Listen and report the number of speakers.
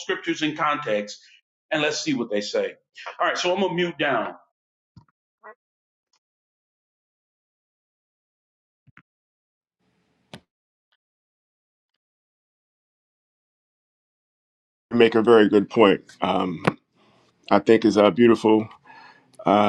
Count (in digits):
2